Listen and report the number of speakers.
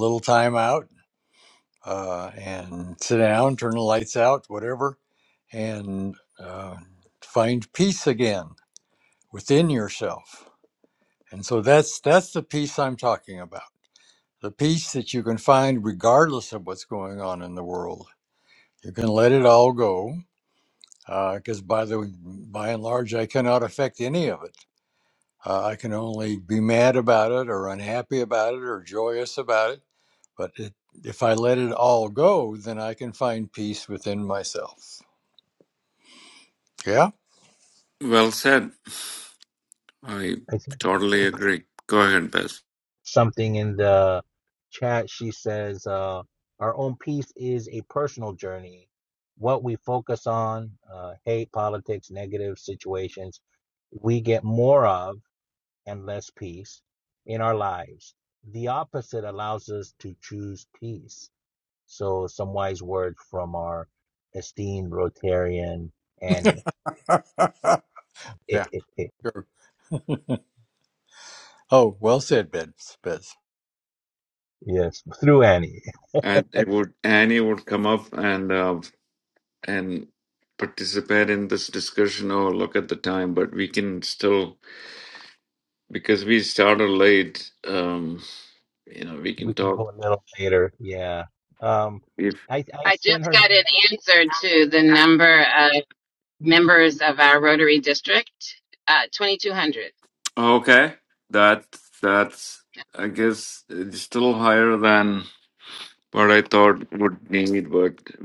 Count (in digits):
4